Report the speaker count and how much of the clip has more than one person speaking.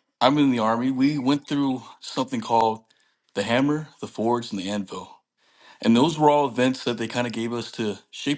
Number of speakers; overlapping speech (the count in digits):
1, no overlap